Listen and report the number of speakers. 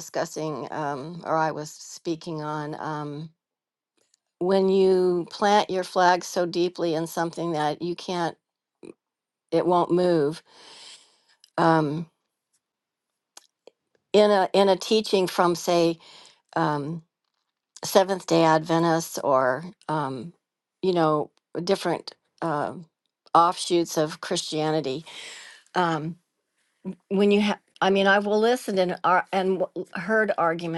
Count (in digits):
1